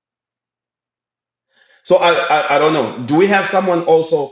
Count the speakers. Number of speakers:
1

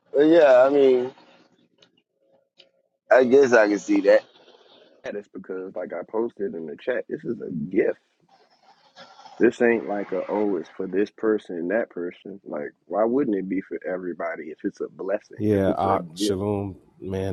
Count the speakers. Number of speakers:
3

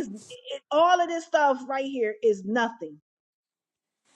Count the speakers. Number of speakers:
1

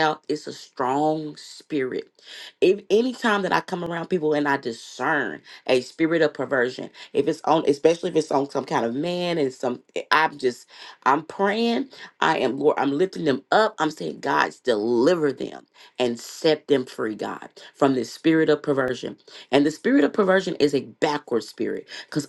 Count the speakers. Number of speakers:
1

